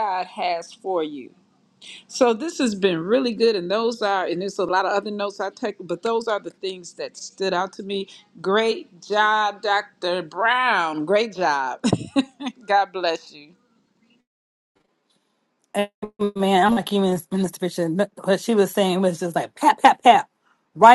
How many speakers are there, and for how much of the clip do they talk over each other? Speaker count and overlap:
2, no overlap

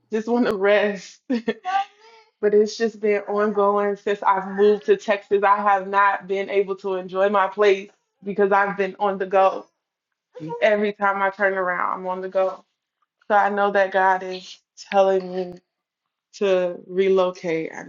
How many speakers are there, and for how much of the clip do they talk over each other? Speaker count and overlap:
1, no overlap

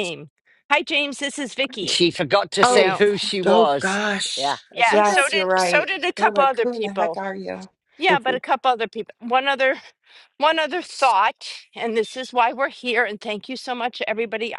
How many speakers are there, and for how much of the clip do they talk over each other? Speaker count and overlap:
3, about 26%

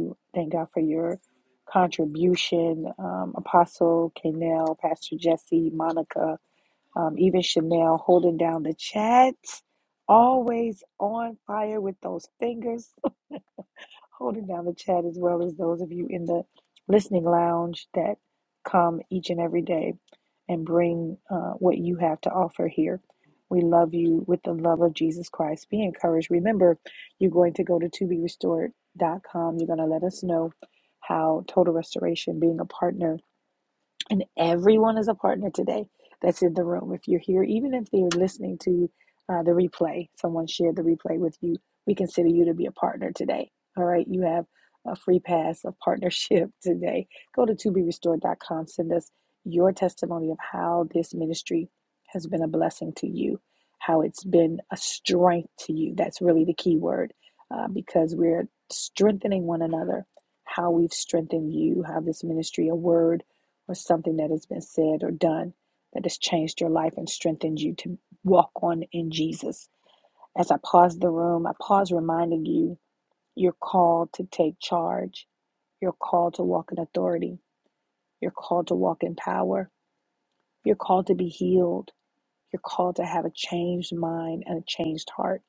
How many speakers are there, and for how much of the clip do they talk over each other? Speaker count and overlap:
1, no overlap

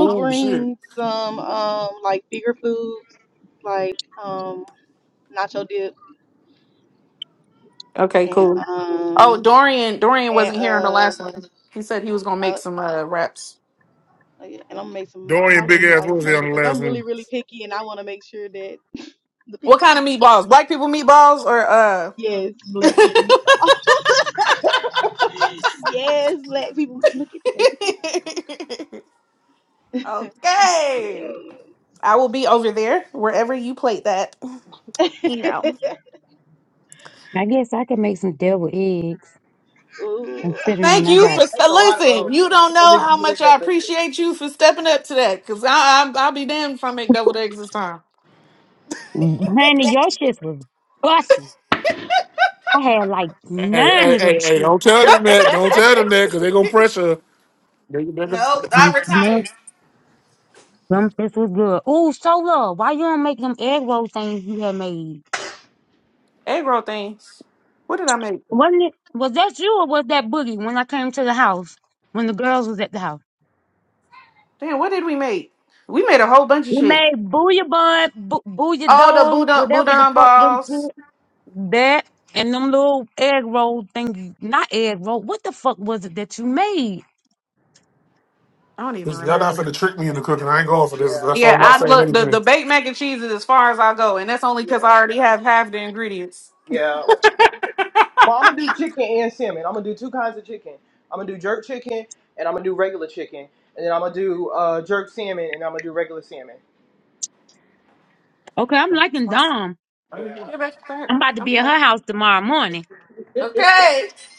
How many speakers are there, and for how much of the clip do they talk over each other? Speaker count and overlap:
5, about 13%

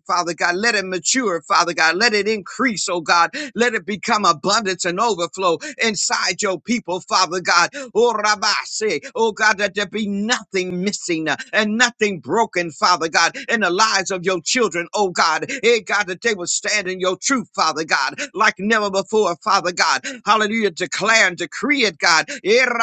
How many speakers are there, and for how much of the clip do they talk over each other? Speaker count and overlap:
1, no overlap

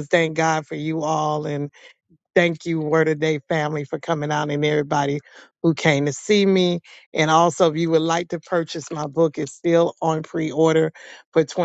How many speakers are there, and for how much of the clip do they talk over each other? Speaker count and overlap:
1, no overlap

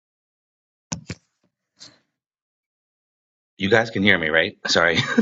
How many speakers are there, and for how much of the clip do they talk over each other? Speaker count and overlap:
1, no overlap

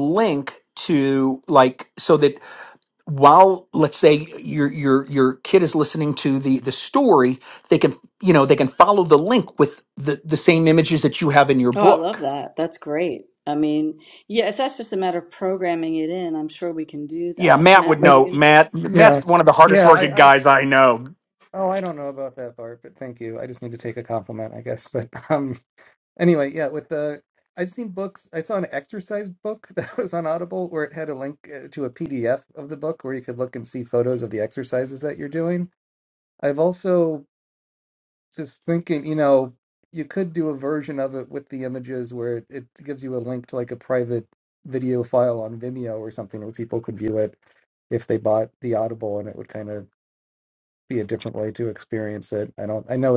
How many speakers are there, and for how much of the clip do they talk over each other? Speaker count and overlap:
3, about 5%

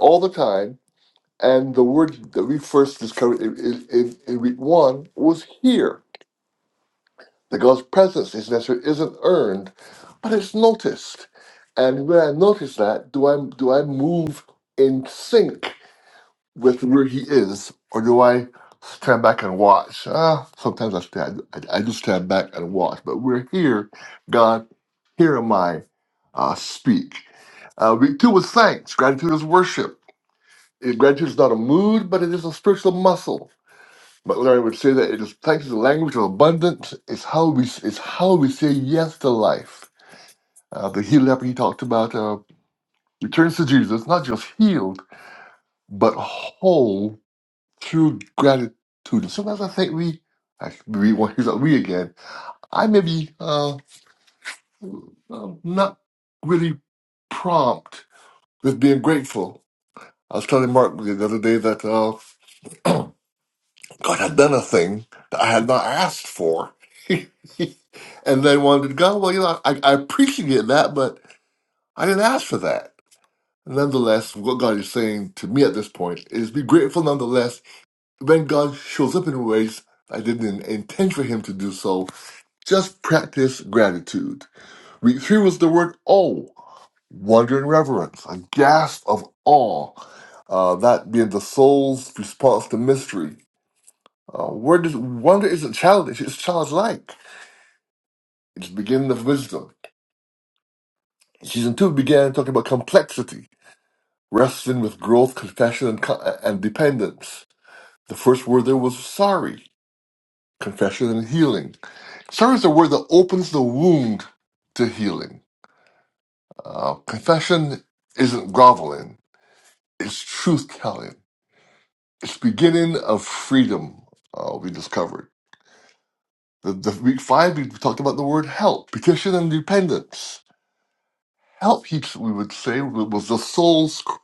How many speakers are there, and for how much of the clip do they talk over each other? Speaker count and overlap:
1, no overlap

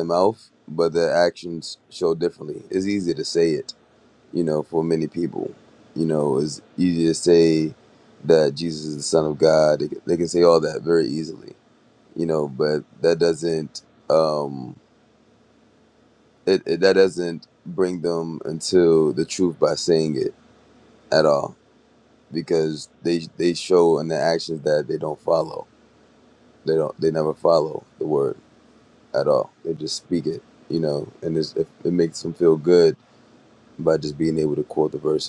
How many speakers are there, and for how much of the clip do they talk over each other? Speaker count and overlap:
1, no overlap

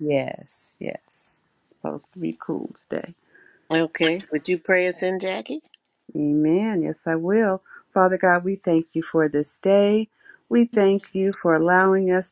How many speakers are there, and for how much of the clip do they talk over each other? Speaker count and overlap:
2, no overlap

